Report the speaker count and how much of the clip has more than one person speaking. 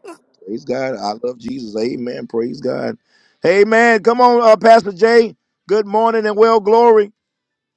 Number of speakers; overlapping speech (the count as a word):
one, no overlap